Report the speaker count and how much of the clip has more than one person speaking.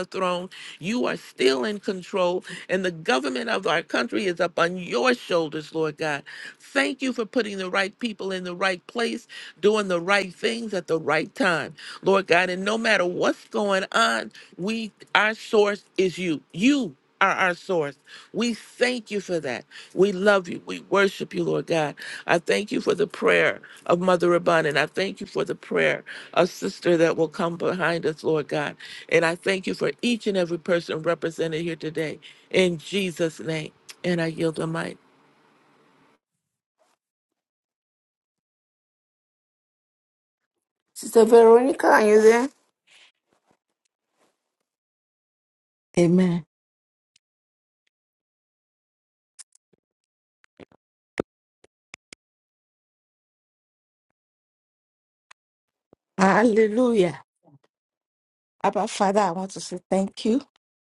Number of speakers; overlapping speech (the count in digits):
3, no overlap